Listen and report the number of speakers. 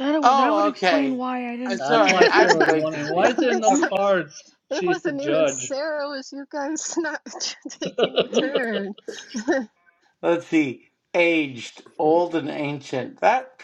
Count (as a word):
four